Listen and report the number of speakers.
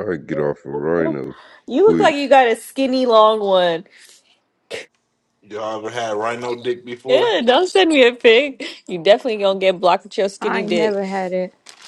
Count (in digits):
4